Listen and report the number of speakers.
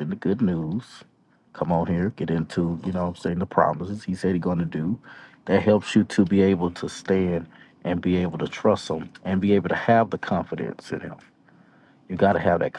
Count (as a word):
one